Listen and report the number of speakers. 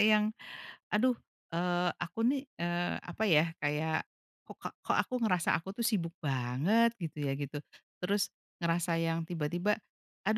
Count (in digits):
1